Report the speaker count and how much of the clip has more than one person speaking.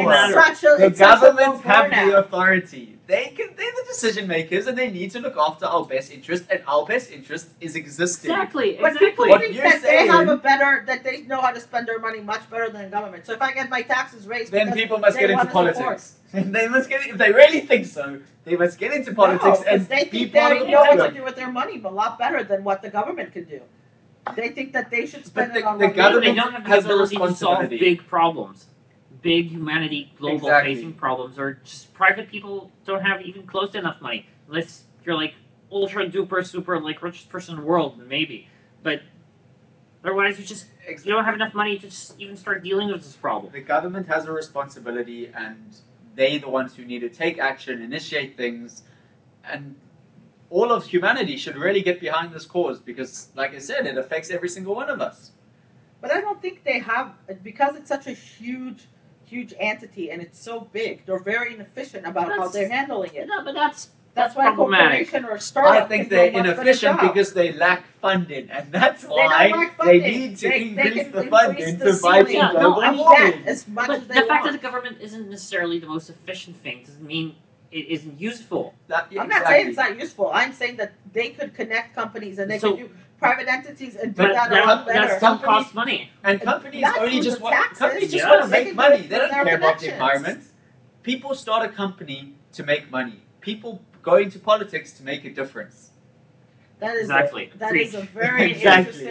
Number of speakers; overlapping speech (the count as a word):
three, about 28%